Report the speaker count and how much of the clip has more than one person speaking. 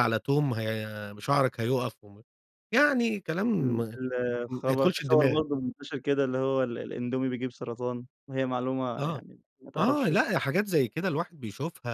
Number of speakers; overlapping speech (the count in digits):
2, about 19%